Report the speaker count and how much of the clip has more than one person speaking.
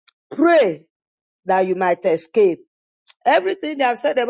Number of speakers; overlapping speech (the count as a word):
one, no overlap